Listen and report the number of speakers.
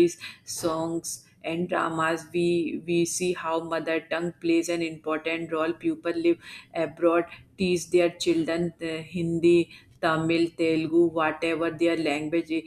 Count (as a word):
one